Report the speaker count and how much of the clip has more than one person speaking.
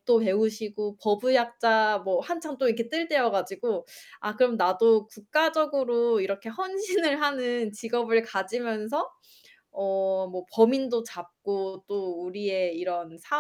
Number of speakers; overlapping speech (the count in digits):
1, no overlap